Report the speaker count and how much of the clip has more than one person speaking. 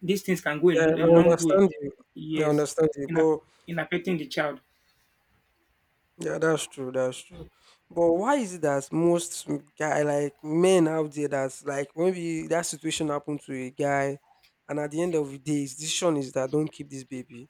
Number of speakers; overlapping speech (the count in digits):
2, about 7%